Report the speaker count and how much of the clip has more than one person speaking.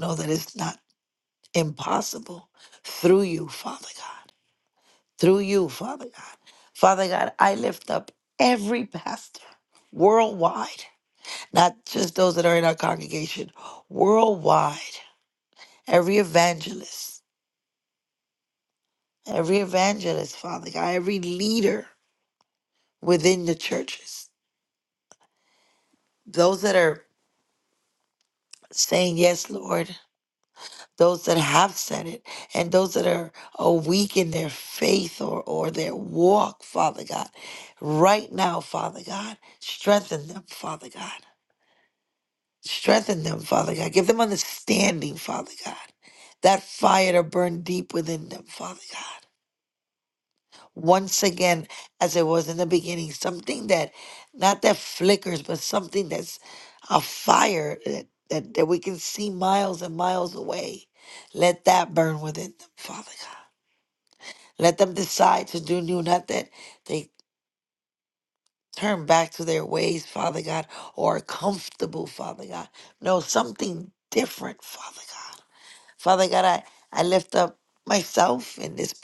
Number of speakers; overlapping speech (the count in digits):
1, no overlap